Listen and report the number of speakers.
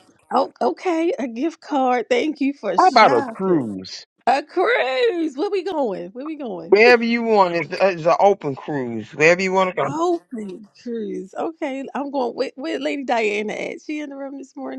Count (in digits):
2